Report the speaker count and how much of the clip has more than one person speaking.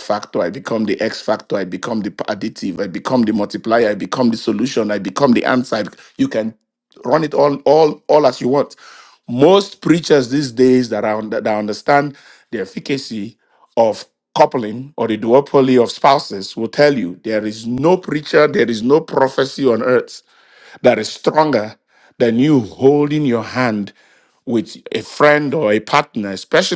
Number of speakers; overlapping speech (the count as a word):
one, no overlap